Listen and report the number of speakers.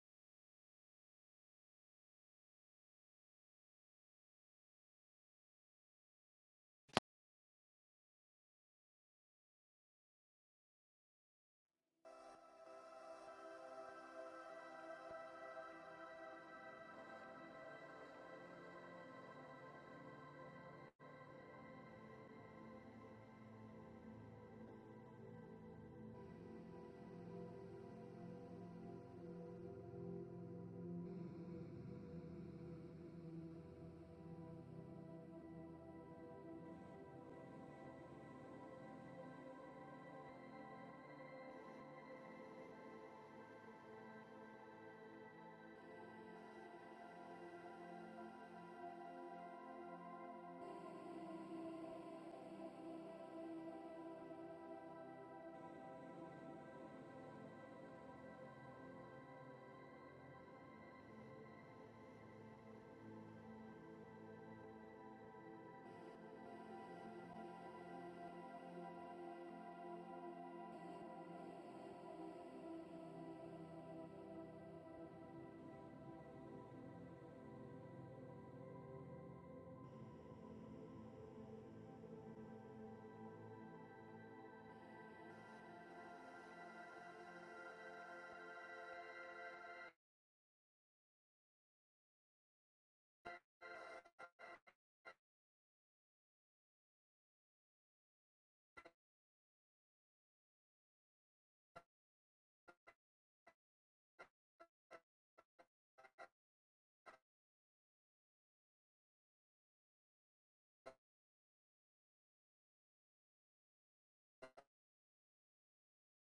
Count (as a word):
zero